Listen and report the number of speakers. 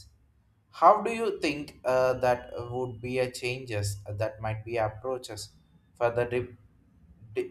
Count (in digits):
1